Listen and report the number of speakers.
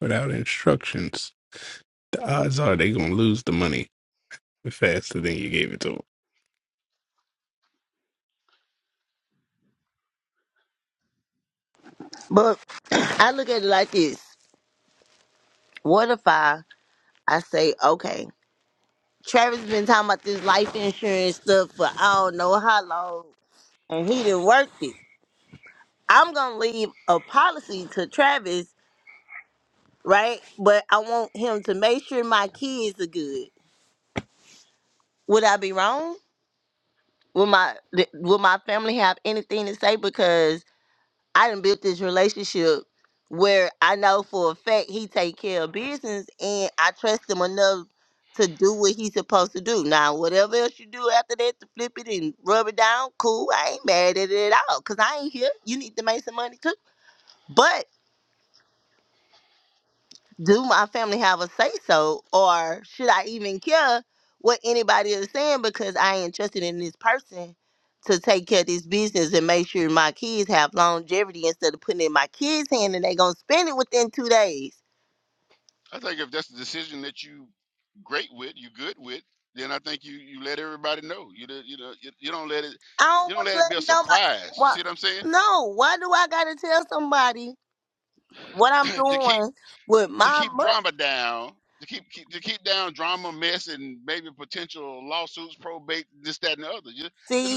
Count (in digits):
3